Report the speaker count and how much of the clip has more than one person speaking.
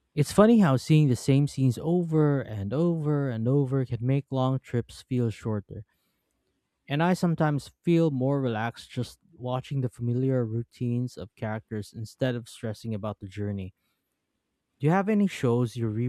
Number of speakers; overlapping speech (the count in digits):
1, no overlap